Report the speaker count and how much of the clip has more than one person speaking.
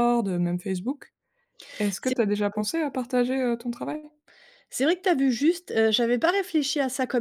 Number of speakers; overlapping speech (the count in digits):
2, about 3%